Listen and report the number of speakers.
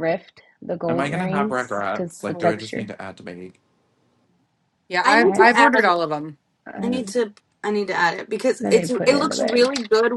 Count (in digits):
4